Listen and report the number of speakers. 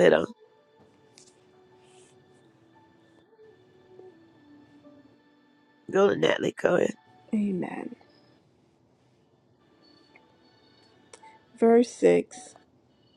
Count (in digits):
2